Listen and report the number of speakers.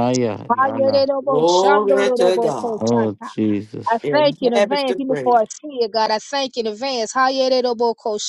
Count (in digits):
3